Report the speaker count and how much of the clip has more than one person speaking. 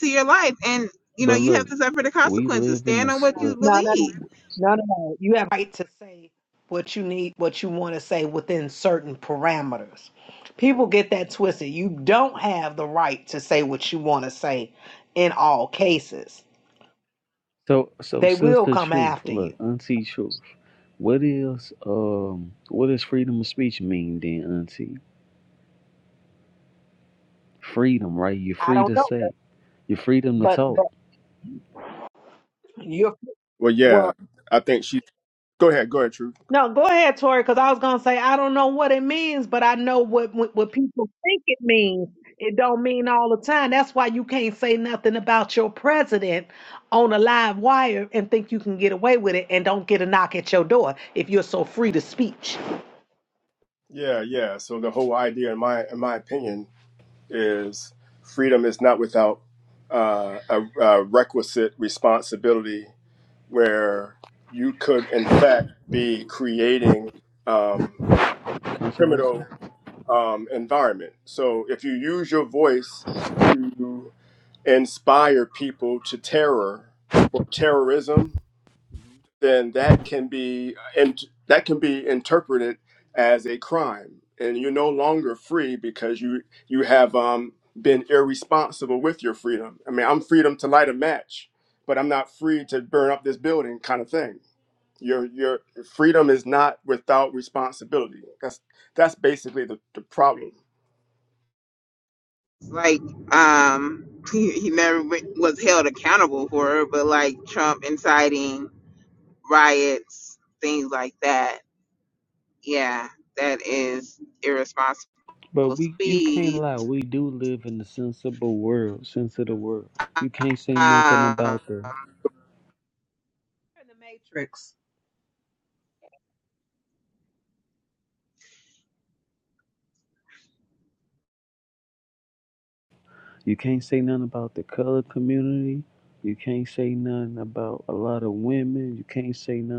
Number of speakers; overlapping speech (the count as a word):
four, about 5%